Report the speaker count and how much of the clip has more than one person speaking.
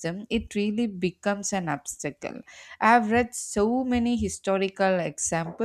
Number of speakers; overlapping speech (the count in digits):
1, no overlap